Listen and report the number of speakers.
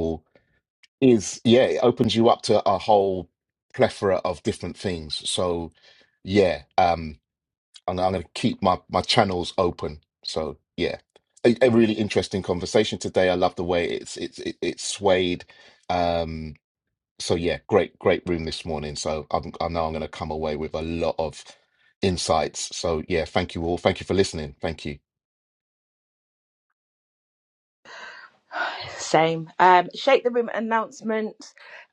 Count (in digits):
2